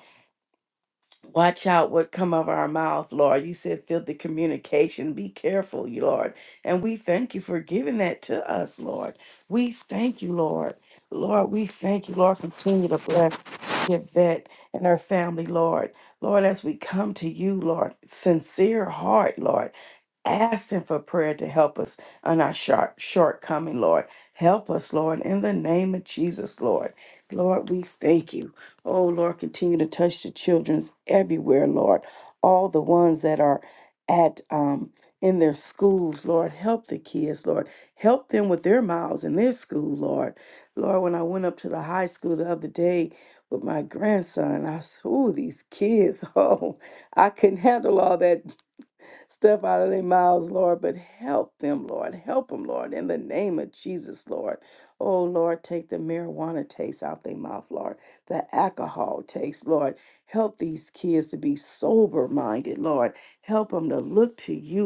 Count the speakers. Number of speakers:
1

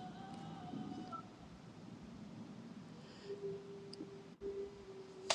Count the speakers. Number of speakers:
0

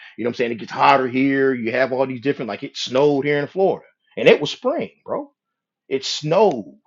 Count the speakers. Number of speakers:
1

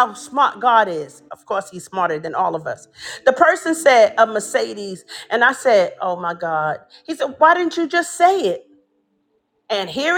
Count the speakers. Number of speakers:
1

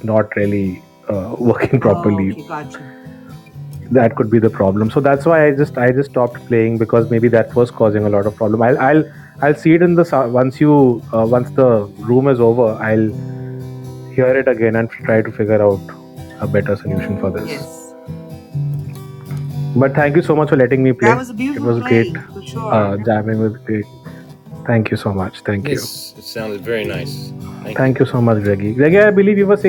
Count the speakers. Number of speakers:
3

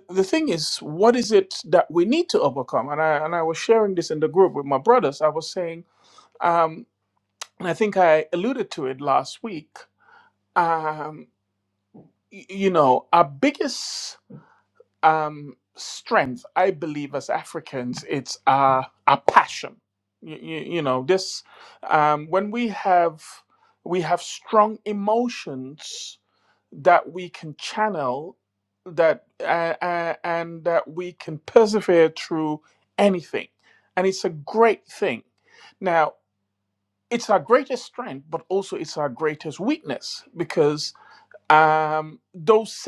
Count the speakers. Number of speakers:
1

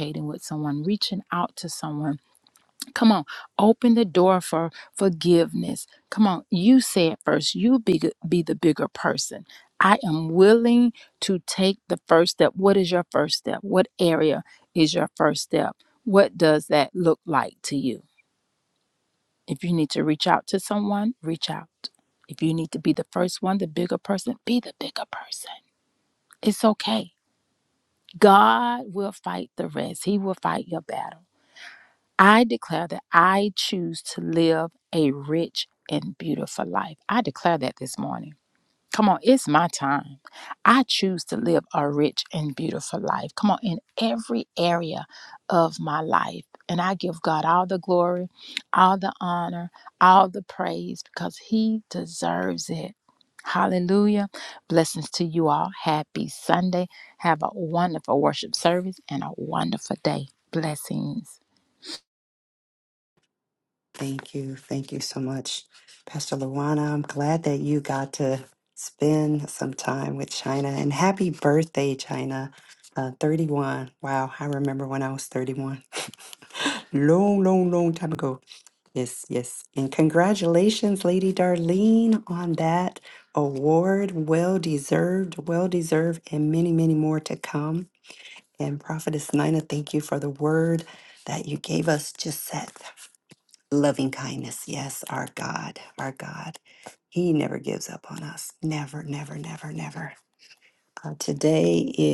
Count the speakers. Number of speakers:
2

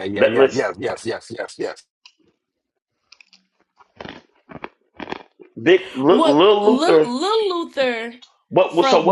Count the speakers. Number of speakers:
3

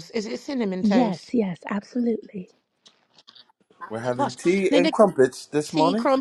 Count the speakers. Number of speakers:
3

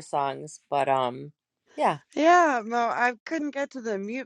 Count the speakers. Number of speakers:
2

